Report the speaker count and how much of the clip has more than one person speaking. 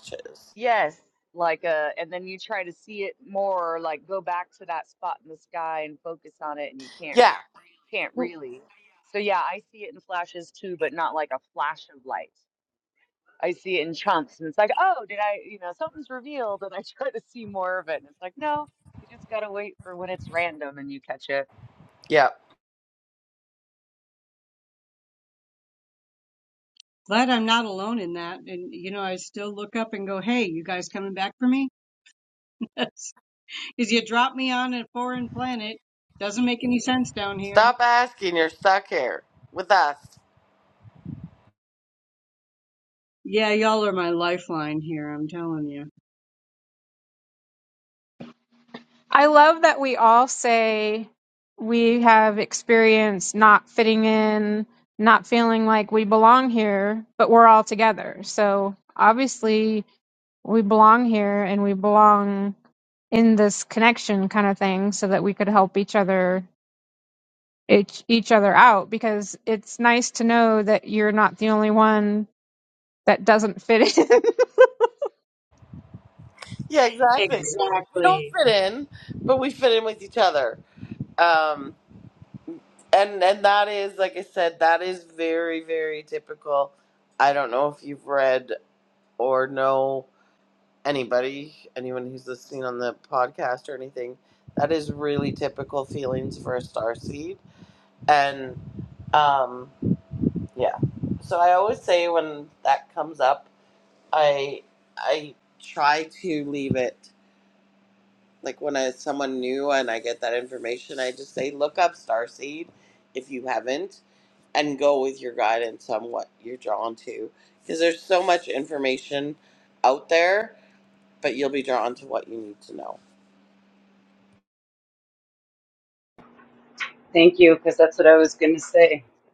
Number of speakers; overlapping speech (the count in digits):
5, about 1%